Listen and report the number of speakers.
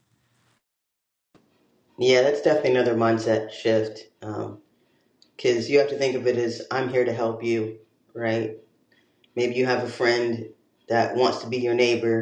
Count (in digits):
1